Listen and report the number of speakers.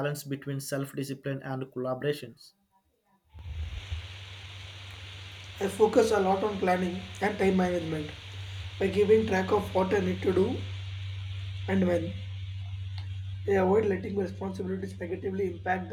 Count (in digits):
2